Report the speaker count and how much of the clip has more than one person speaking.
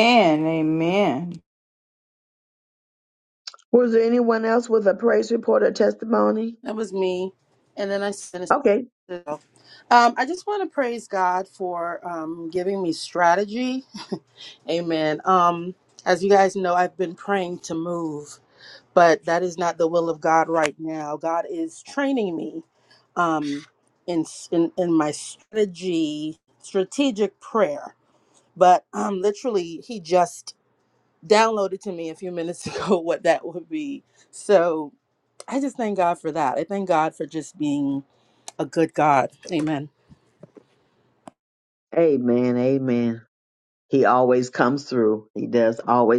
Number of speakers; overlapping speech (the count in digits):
3, no overlap